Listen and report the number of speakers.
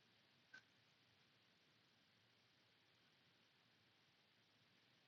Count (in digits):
0